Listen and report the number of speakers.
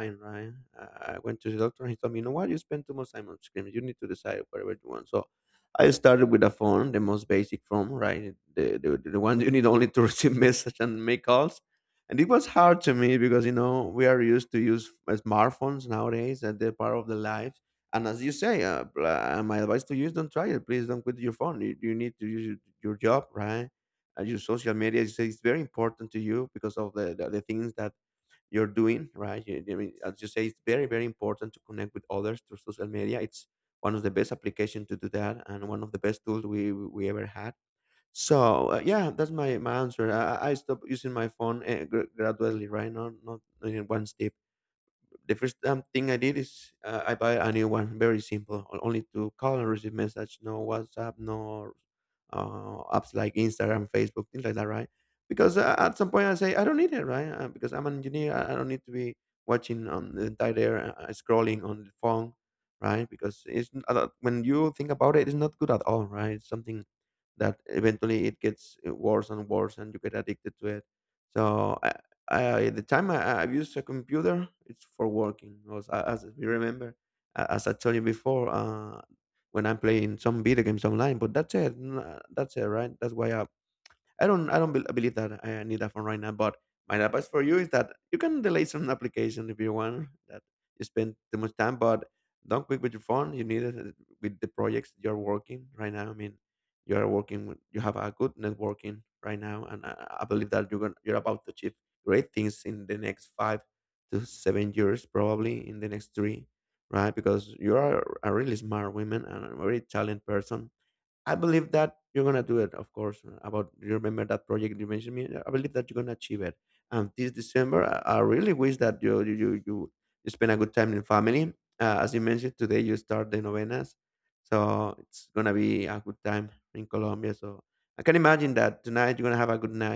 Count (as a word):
one